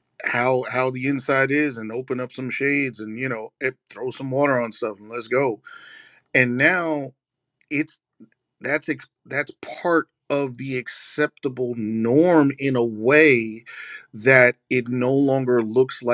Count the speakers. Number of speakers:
1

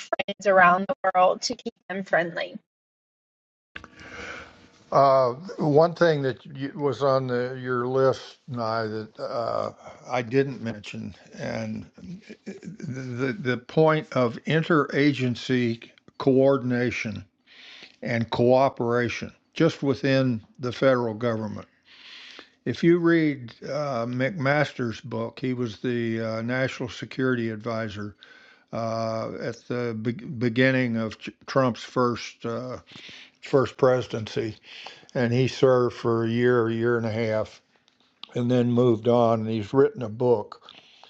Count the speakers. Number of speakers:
2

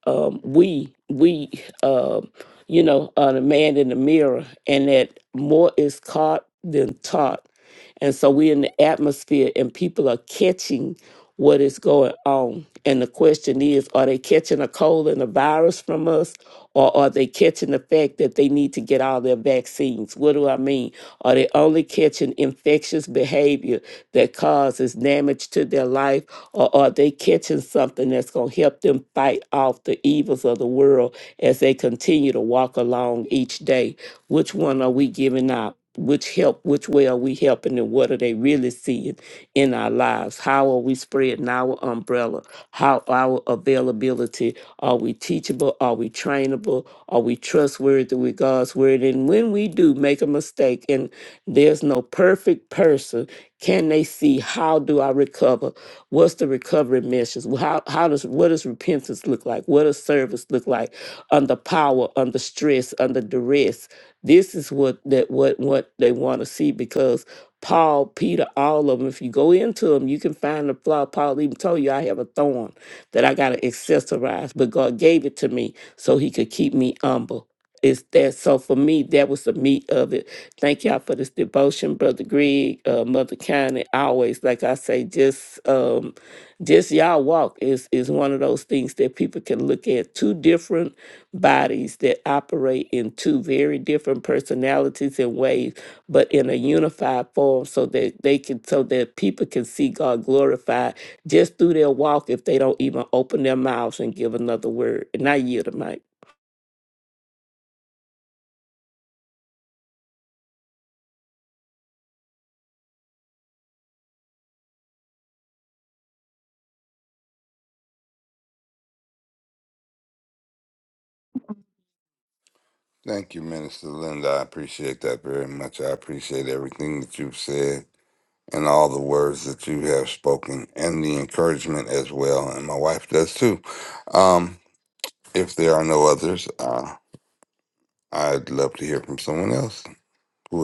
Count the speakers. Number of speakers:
2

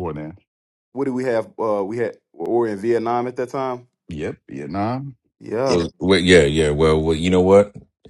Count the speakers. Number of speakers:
3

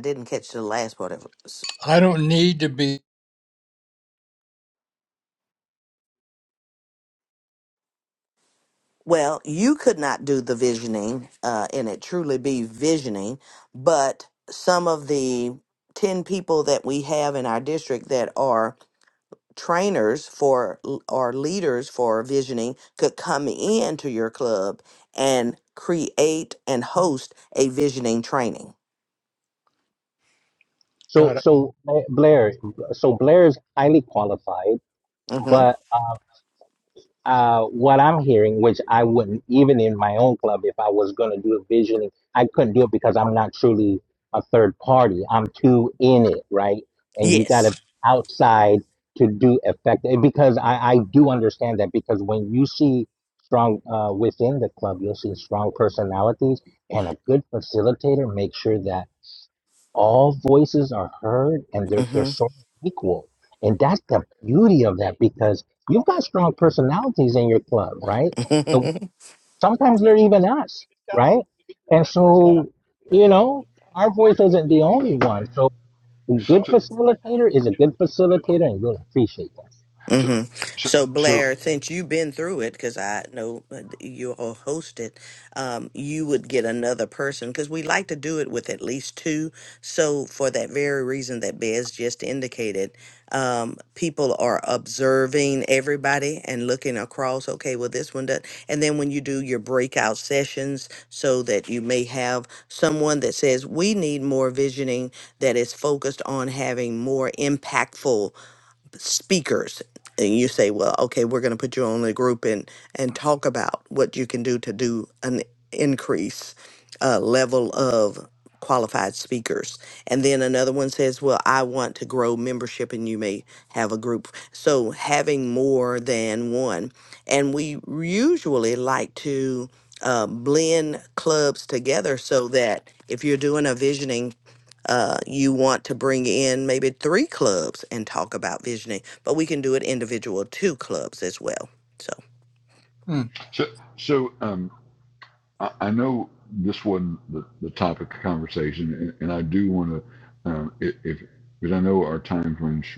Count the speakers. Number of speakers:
4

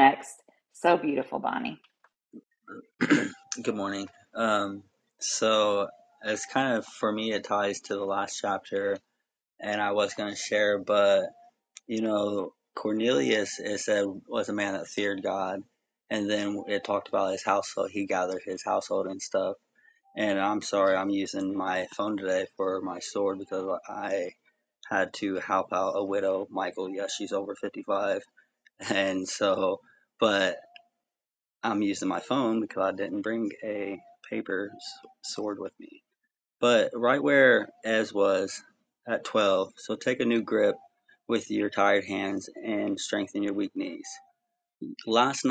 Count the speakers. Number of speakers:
2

